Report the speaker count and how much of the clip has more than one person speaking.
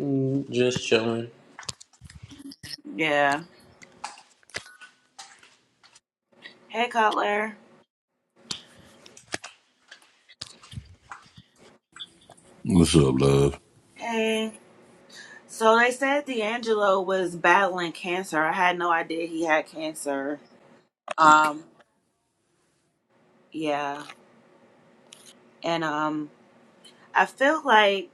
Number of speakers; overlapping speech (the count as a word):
three, about 1%